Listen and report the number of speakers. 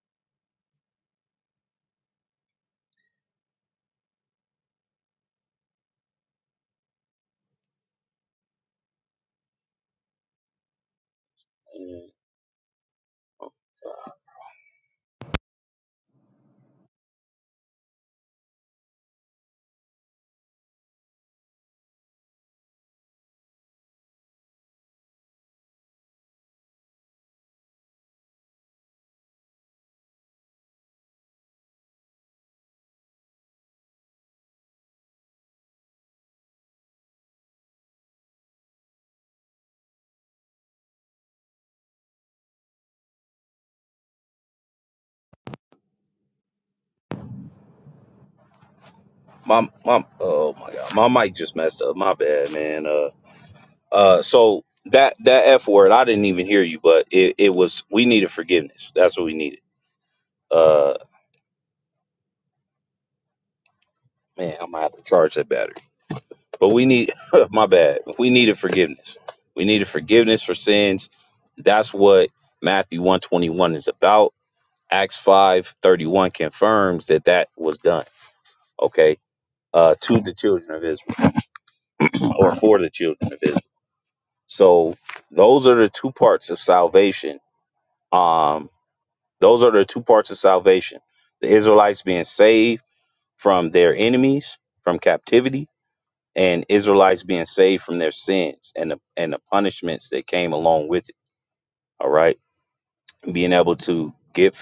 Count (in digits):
1